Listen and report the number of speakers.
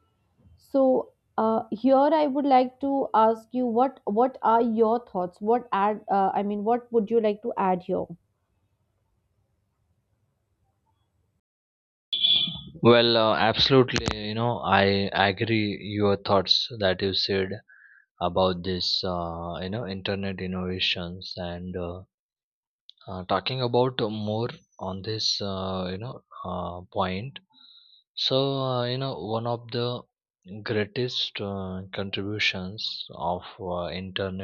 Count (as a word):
two